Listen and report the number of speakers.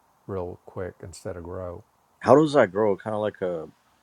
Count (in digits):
2